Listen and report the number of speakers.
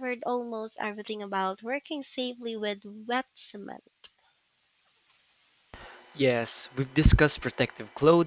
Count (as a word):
two